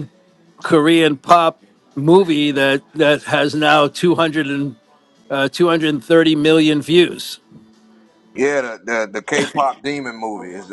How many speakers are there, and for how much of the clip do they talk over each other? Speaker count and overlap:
2, no overlap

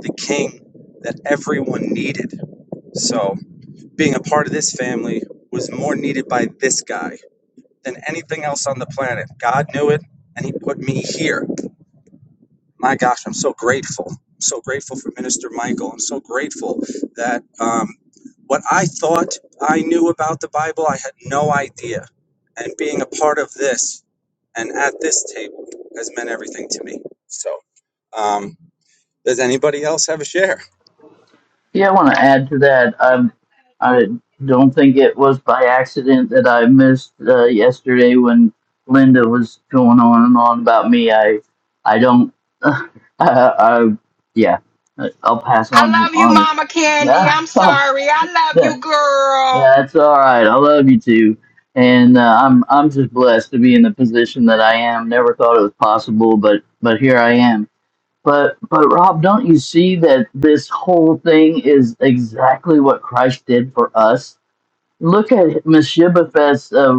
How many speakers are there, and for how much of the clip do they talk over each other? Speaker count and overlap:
3, about 2%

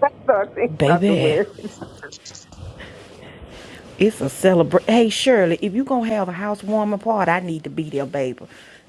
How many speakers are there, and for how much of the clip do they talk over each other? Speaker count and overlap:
2, about 8%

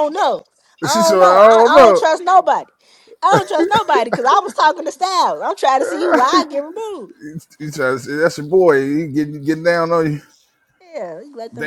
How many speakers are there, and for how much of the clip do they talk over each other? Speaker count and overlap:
2, about 11%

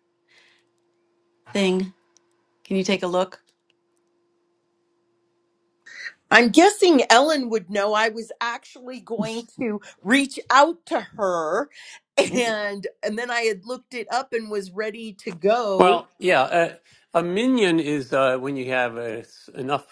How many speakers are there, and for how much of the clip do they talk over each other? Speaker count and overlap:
3, about 1%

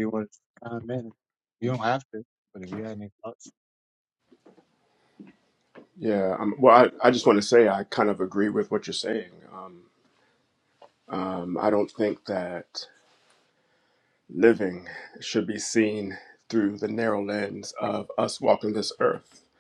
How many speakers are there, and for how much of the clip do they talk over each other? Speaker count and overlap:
2, no overlap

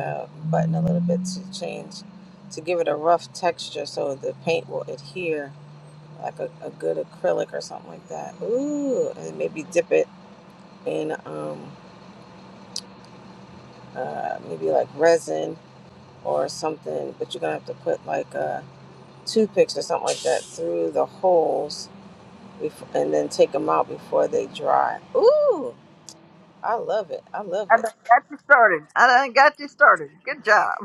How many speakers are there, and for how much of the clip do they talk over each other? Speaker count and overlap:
2, about 1%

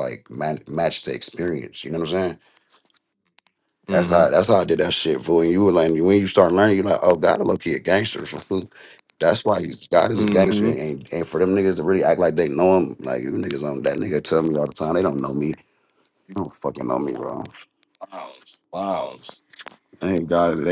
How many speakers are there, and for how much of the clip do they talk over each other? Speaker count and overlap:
2, about 5%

